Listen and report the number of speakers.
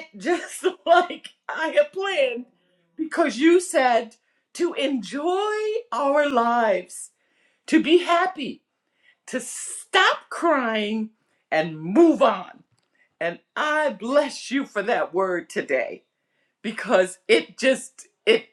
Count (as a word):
one